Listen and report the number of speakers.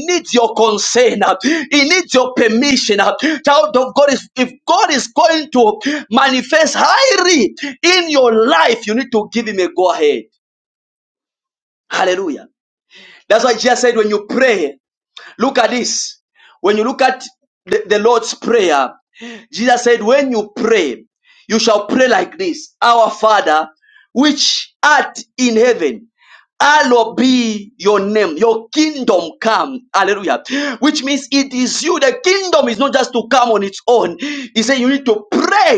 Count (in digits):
1